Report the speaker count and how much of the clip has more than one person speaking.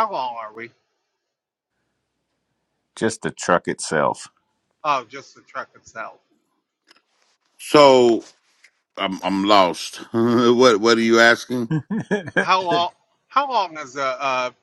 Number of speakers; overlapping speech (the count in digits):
3, no overlap